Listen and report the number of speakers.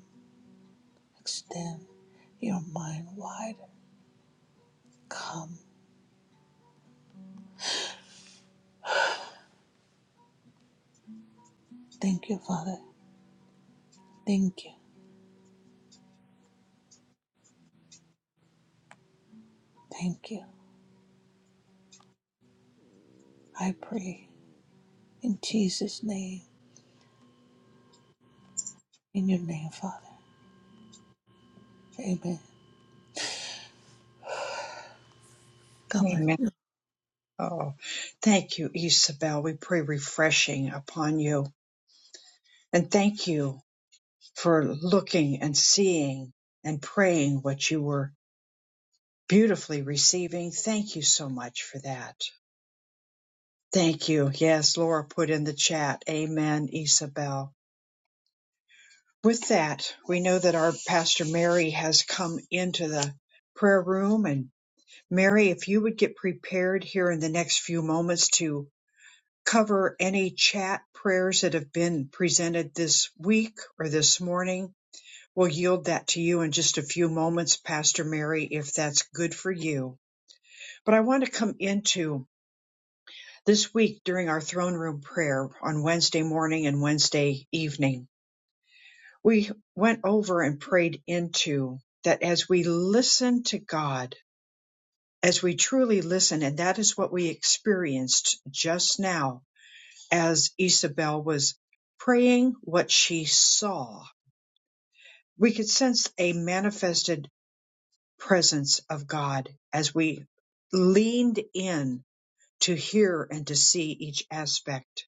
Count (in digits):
2